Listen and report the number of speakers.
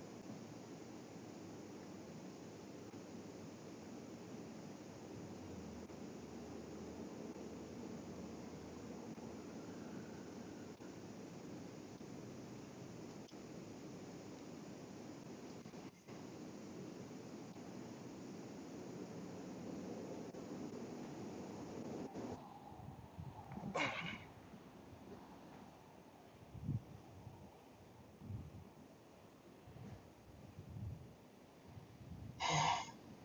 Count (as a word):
zero